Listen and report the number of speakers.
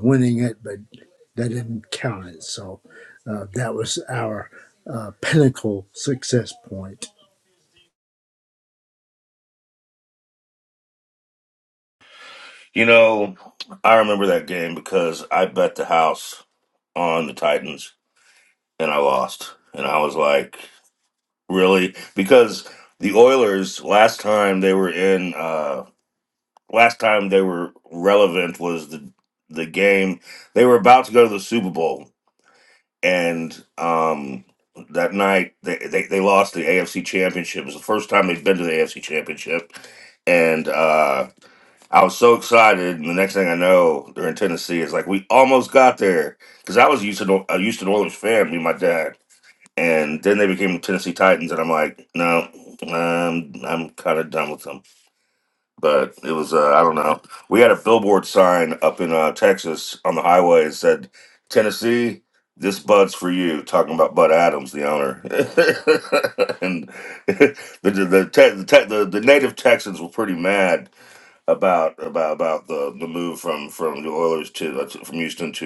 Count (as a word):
two